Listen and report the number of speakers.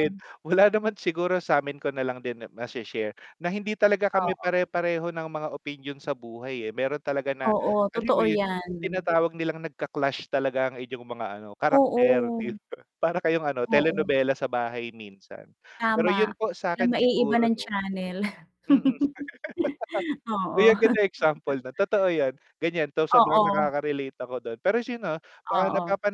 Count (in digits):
2